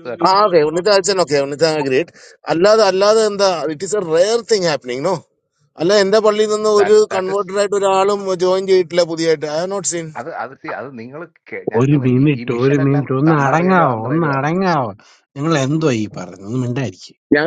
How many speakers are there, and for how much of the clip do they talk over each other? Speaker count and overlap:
3, about 21%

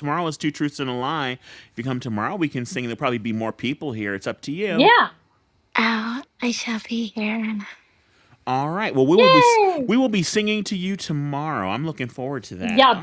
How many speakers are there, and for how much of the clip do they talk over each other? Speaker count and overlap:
3, about 7%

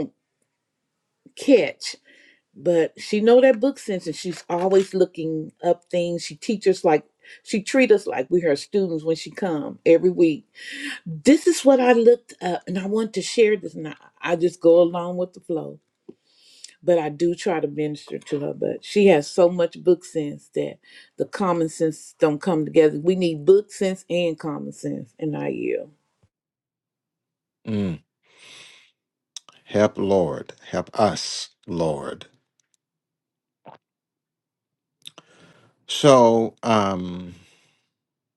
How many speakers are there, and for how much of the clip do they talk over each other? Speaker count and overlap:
2, no overlap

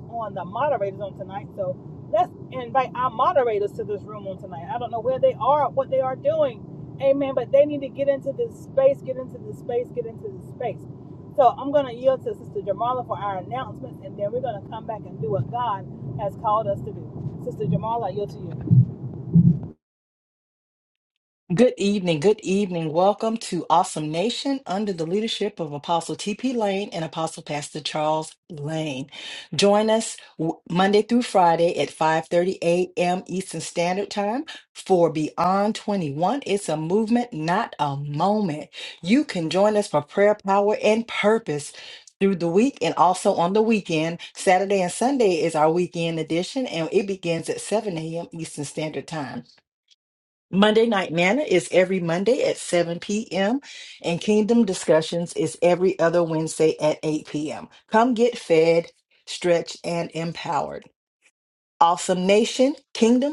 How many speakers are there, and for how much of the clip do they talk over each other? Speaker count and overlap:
2, no overlap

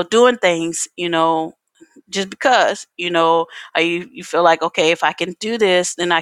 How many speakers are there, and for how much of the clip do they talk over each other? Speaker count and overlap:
1, no overlap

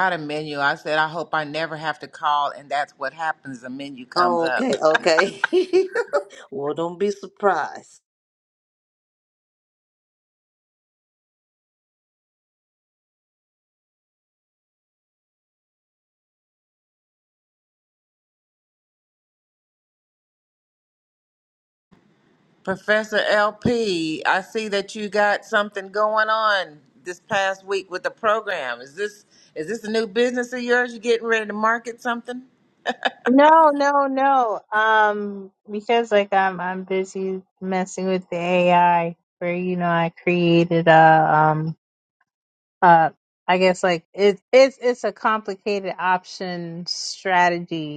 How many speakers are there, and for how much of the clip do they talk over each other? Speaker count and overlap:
3, about 1%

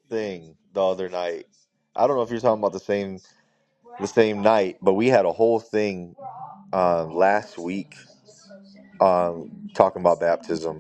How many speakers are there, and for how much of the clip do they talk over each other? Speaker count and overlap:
1, no overlap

